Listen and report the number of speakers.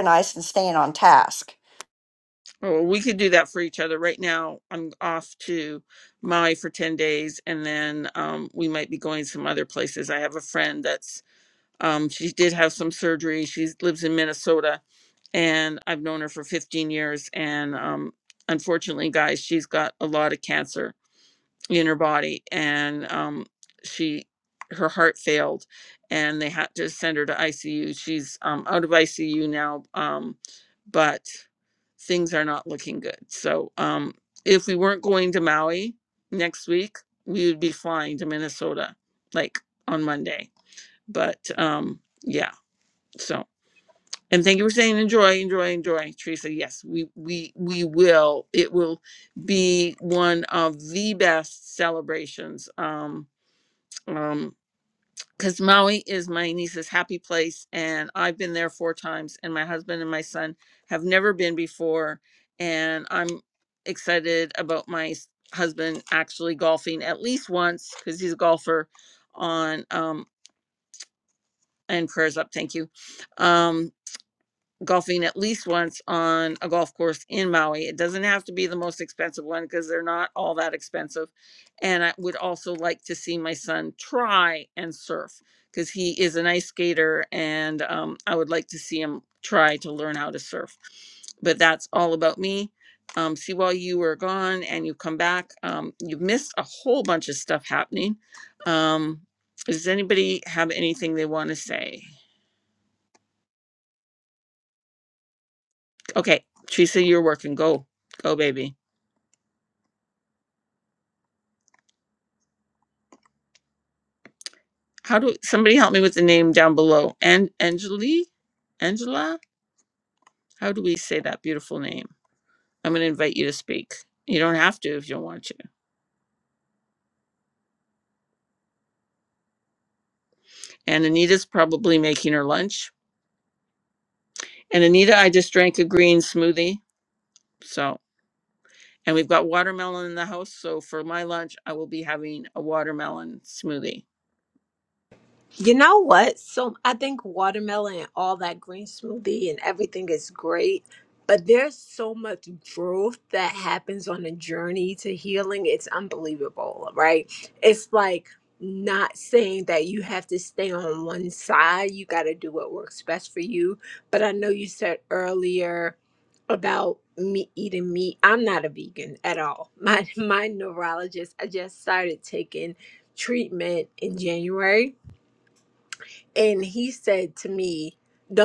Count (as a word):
three